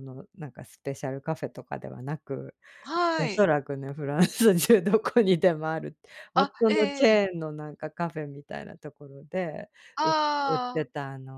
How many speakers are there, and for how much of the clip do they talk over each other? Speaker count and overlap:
two, about 14%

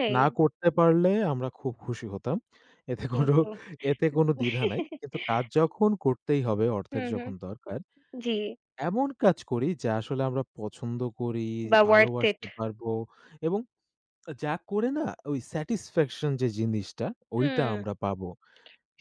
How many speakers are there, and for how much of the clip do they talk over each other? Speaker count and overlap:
two, about 9%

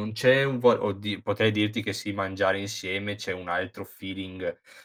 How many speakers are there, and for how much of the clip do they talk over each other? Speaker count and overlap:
one, no overlap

